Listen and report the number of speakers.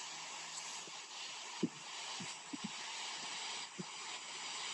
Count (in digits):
0